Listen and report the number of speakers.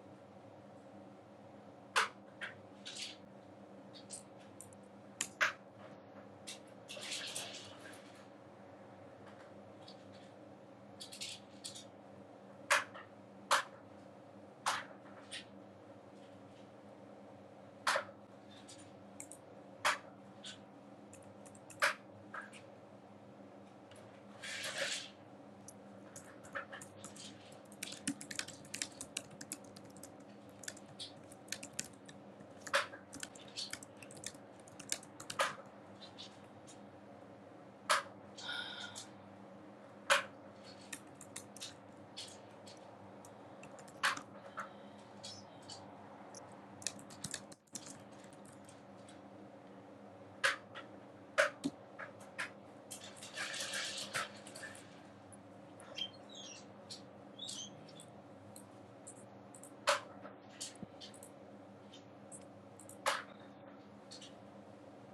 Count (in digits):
0